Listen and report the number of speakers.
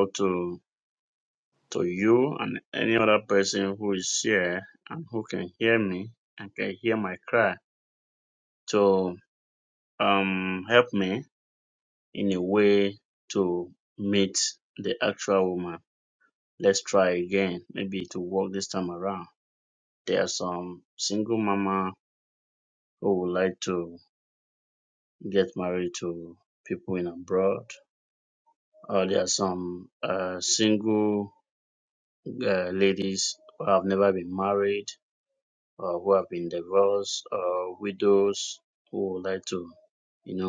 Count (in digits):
1